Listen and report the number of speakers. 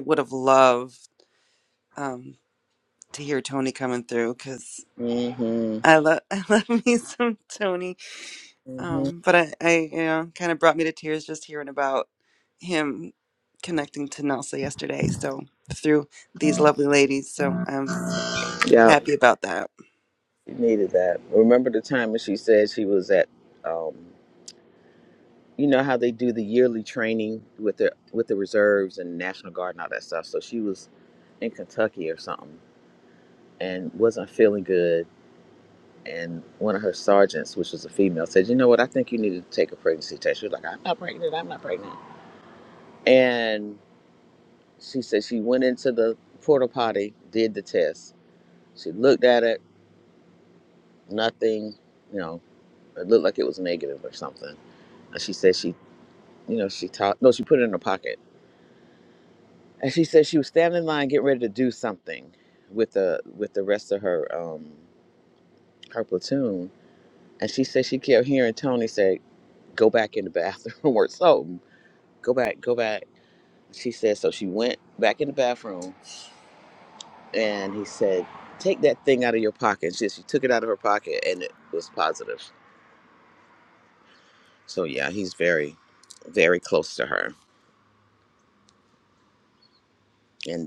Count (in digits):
2